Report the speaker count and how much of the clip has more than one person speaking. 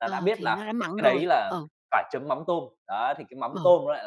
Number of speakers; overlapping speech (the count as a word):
two, about 34%